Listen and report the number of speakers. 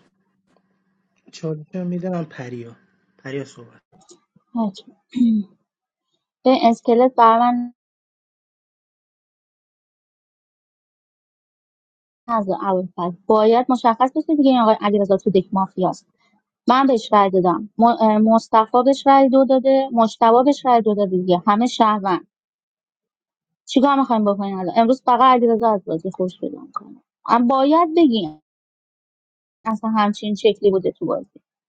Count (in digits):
2